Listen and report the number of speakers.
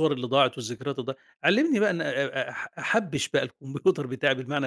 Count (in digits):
1